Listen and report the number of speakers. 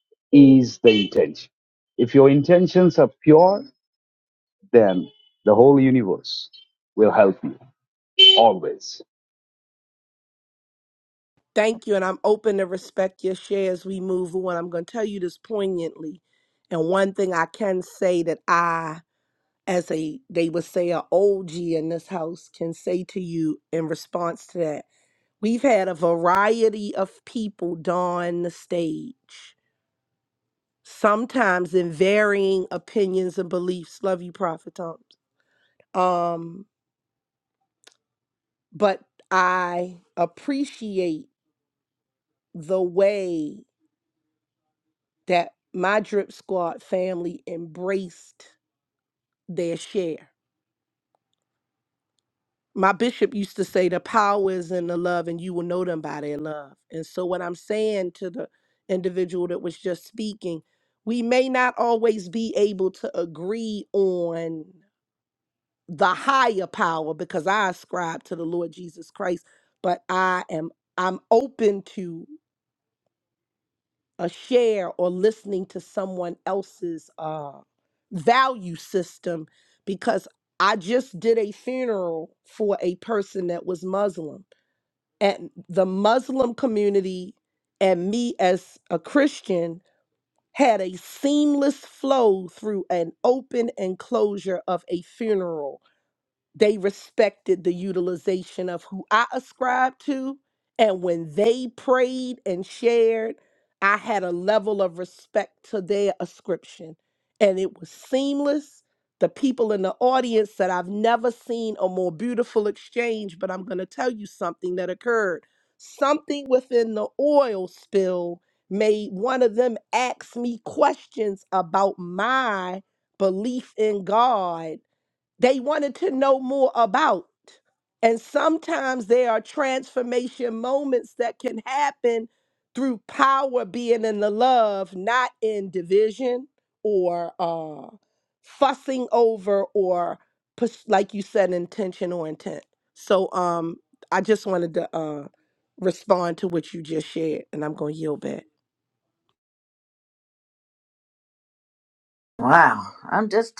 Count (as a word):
three